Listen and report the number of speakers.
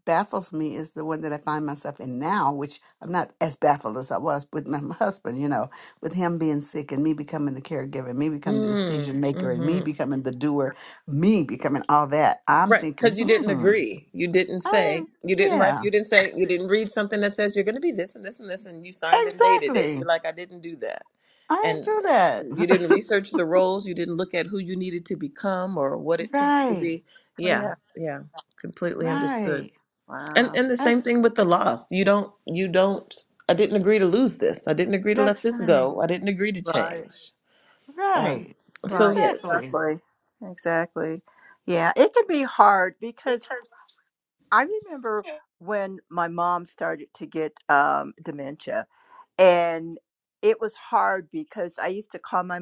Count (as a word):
three